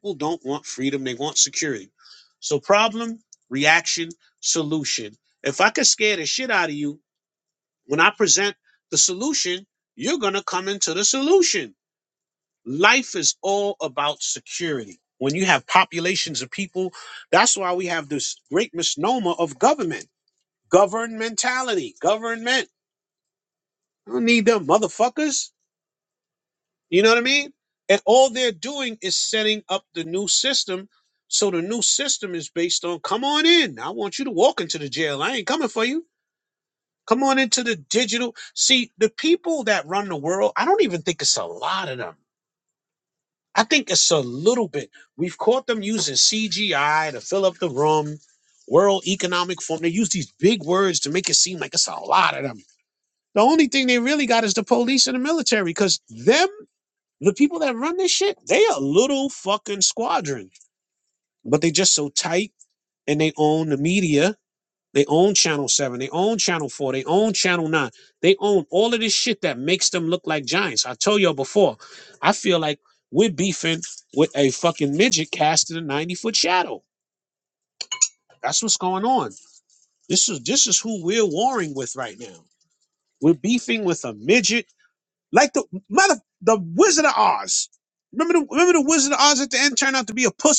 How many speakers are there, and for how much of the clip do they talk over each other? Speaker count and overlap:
1, no overlap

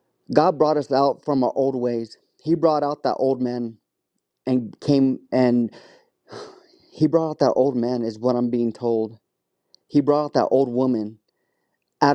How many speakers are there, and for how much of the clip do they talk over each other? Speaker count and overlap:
1, no overlap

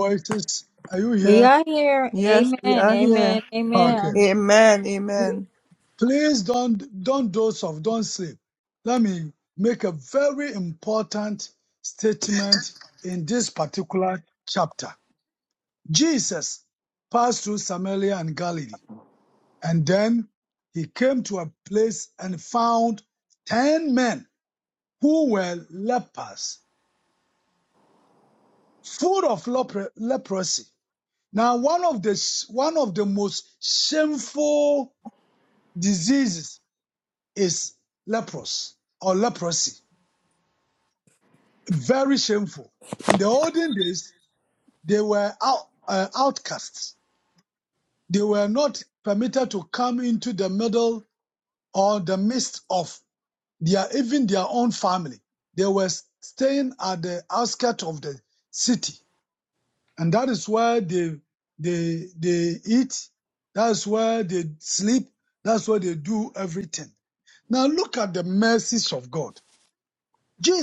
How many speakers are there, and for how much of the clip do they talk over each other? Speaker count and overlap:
3, about 3%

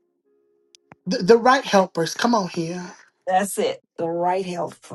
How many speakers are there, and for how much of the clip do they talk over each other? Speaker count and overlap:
2, no overlap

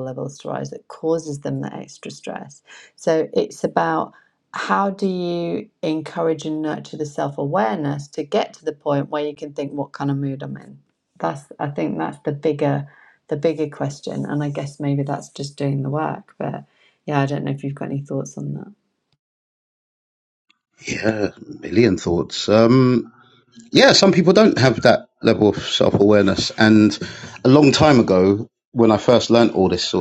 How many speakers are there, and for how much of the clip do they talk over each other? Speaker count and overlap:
2, no overlap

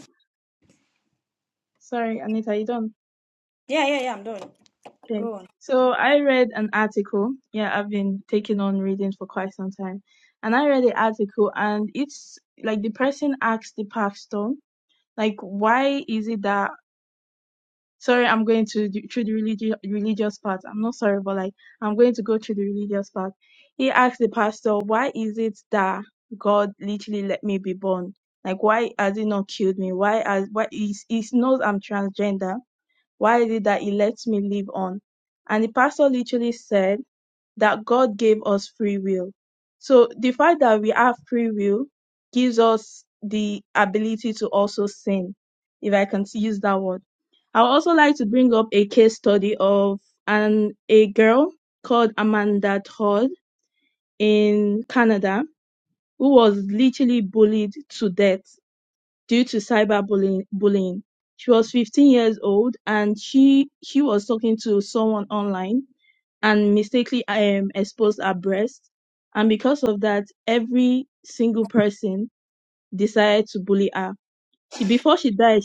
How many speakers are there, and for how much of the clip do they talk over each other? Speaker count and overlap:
2, under 1%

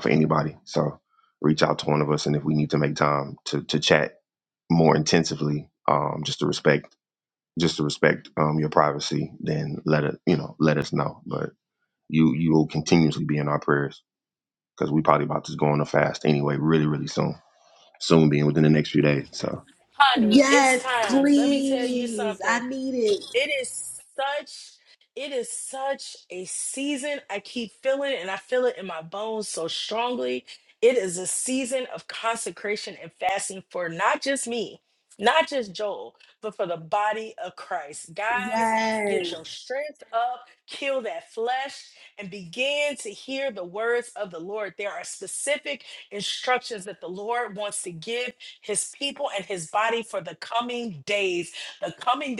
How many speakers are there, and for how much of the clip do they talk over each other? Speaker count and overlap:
3, about 7%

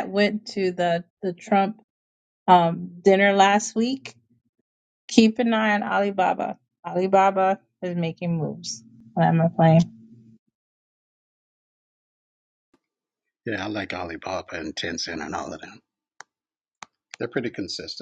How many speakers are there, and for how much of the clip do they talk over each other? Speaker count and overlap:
2, no overlap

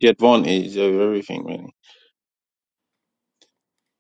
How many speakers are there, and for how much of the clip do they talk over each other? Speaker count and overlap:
1, no overlap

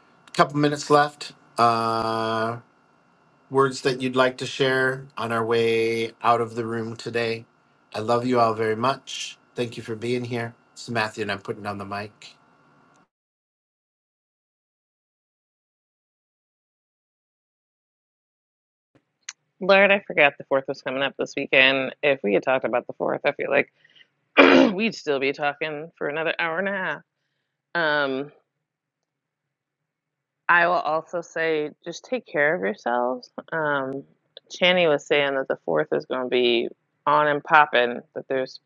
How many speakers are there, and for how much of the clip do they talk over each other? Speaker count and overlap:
2, no overlap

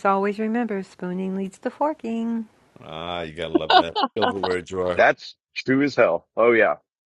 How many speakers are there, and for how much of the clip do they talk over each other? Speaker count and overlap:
3, about 1%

